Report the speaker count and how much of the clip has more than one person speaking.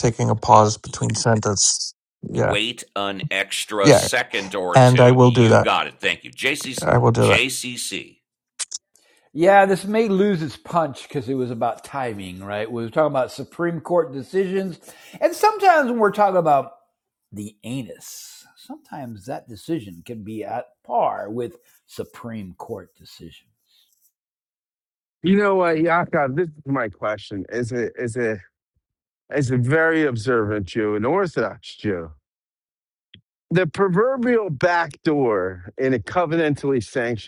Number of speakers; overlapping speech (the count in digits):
4, about 4%